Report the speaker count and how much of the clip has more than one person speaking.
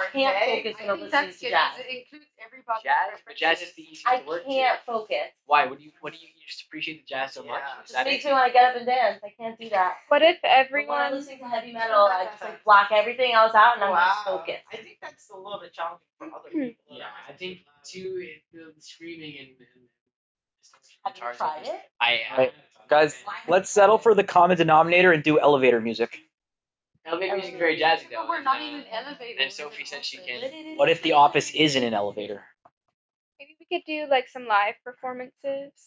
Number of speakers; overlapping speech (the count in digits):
6, about 37%